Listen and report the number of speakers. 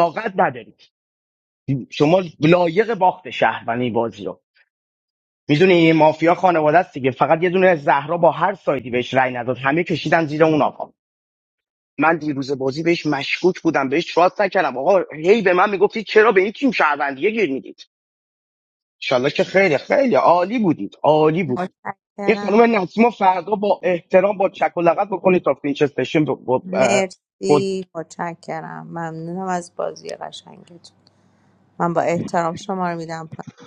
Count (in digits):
2